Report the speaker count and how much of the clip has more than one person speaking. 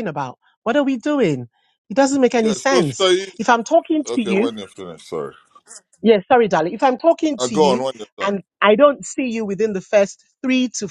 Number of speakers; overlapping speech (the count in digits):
2, about 14%